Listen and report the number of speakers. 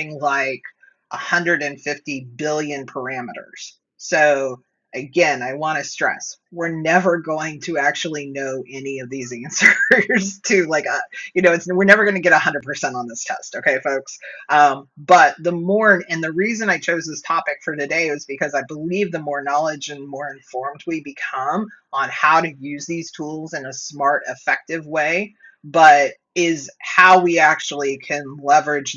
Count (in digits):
1